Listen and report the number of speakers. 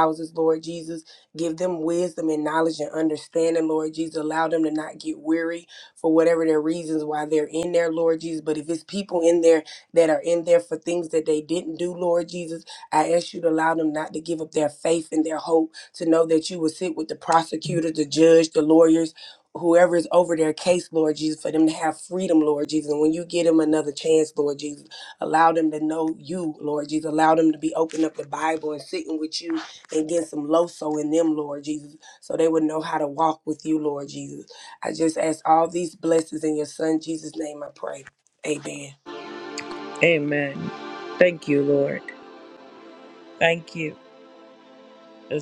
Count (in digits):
2